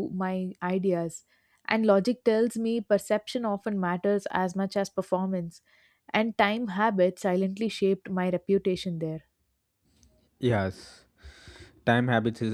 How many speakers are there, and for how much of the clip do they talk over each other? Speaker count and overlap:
2, no overlap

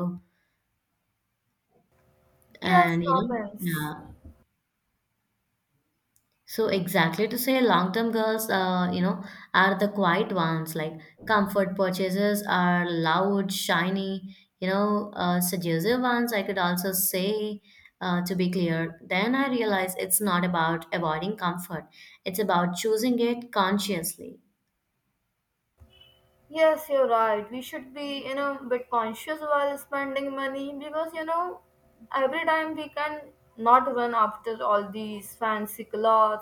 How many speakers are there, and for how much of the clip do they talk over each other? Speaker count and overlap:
2, about 3%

